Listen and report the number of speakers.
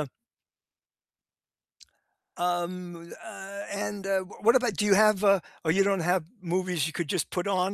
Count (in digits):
1